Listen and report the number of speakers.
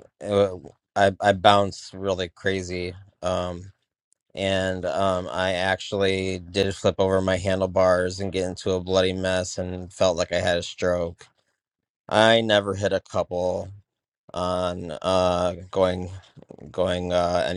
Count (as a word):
one